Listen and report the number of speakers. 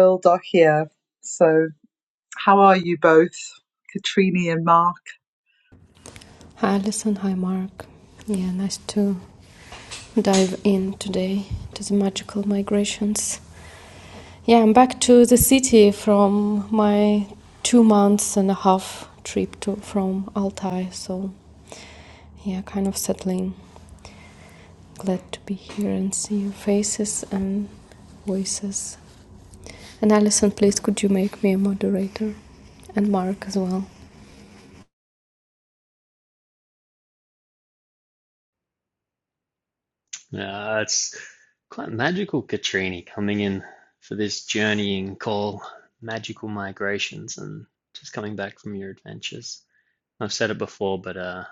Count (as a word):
three